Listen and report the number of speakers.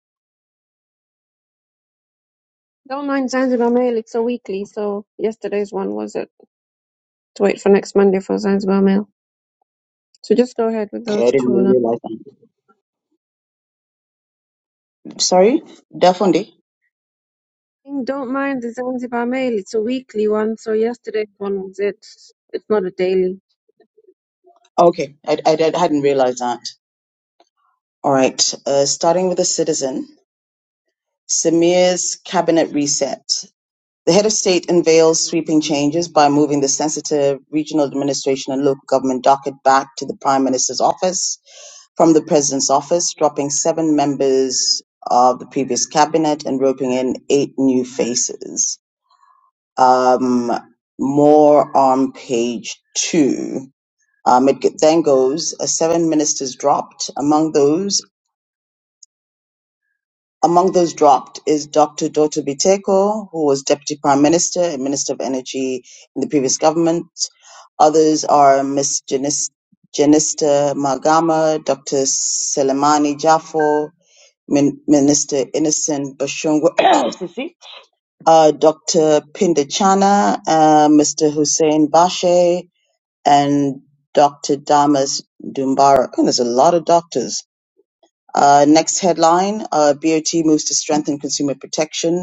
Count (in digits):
2